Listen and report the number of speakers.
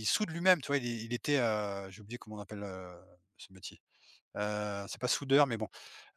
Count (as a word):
one